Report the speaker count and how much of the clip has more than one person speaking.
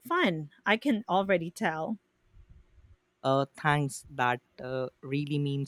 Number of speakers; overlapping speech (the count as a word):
two, no overlap